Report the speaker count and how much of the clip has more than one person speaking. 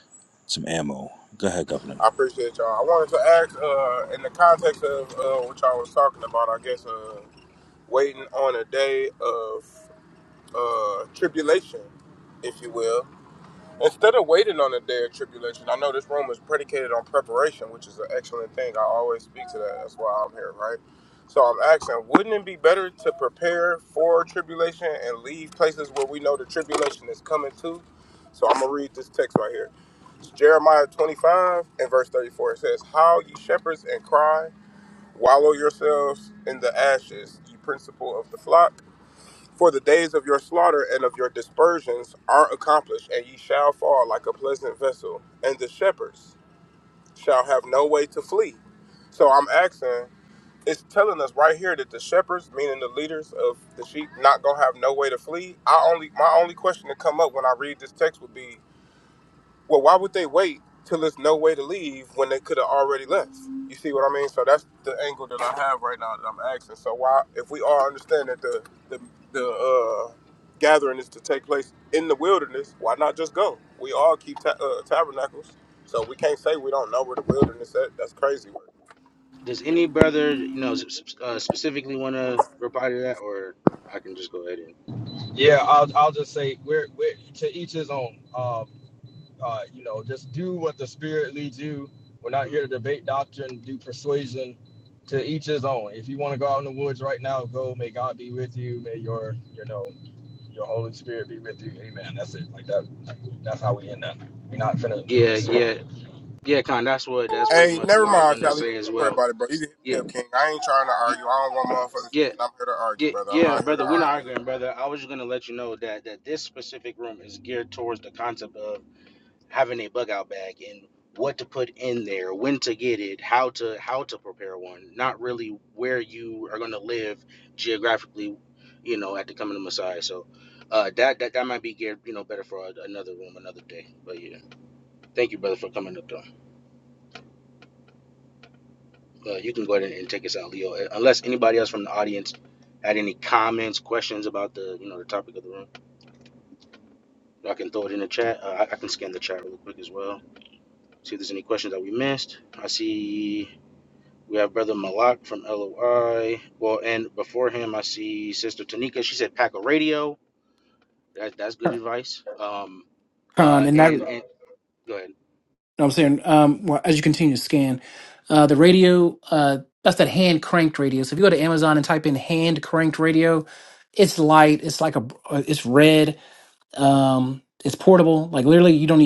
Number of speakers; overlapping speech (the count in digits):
5, about 3%